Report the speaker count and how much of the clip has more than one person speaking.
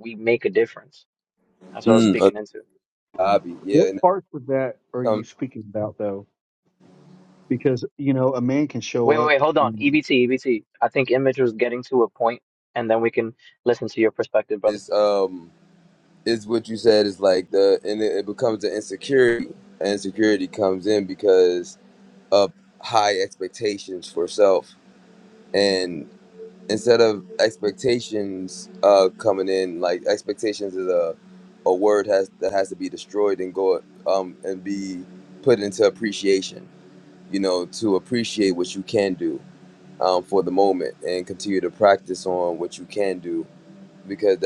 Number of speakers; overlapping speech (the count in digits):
3, about 4%